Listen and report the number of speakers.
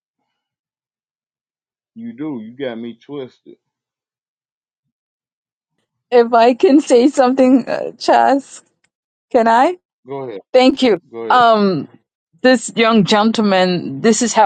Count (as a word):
two